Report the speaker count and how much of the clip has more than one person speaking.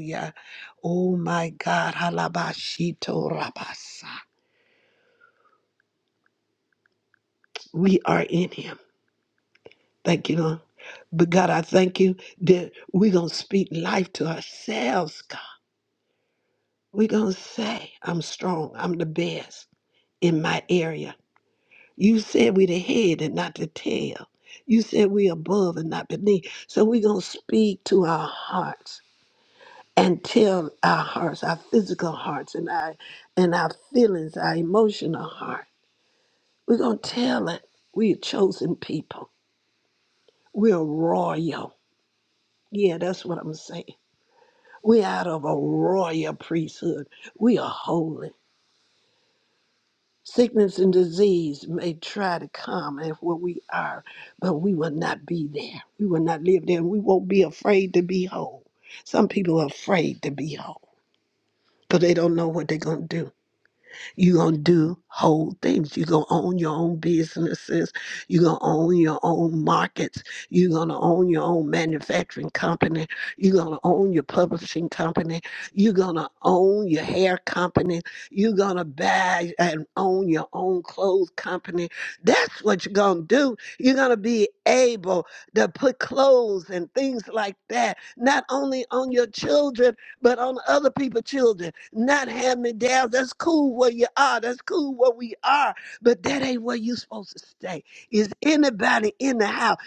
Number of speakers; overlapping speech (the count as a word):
one, no overlap